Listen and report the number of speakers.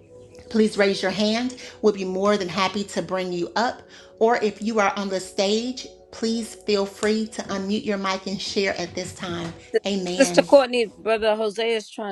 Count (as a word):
two